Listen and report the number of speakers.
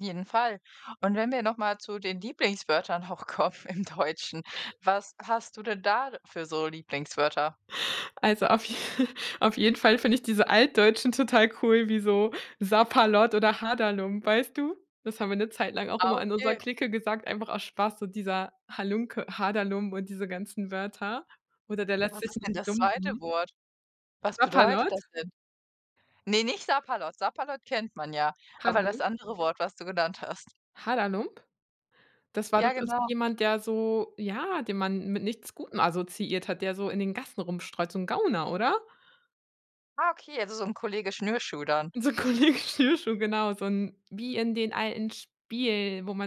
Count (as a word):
two